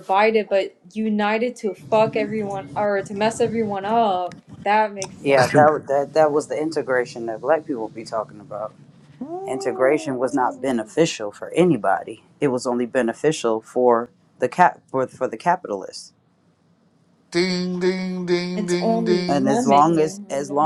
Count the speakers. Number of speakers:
3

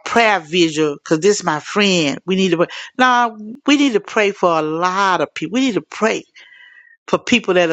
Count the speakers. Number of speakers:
1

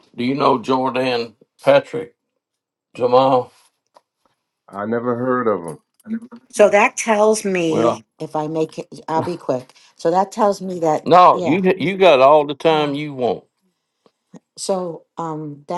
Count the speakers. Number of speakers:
3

